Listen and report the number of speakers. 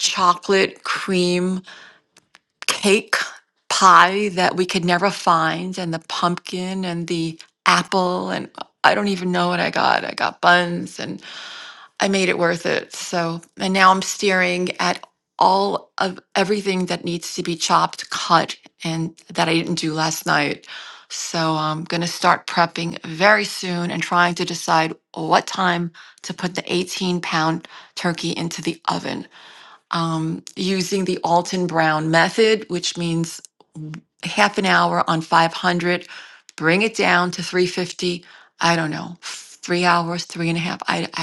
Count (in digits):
1